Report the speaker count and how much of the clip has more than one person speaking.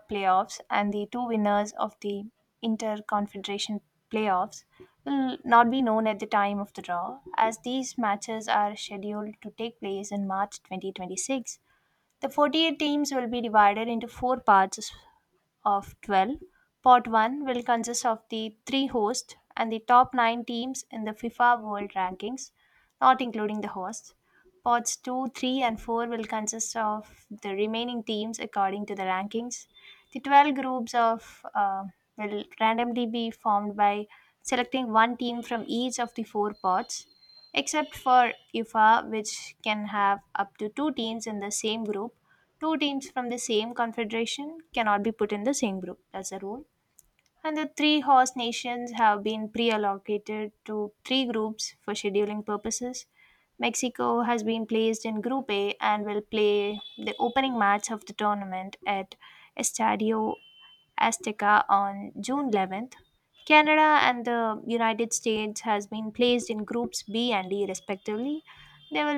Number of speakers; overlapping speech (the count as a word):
one, no overlap